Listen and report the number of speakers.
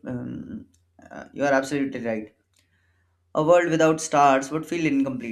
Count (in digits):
1